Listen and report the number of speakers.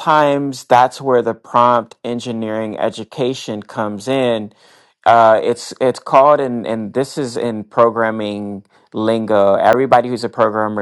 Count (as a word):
one